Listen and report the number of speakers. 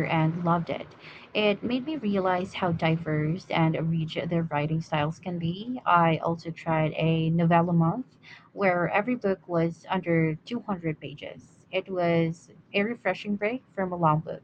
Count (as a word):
one